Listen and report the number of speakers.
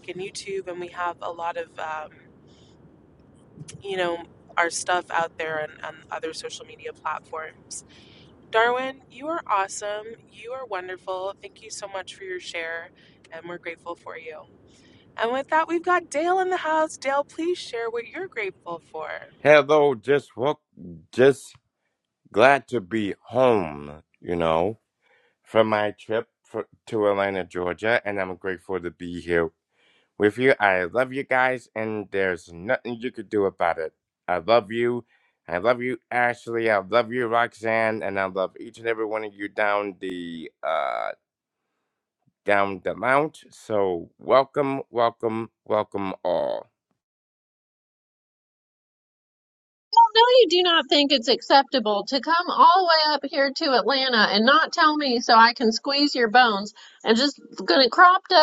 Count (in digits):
3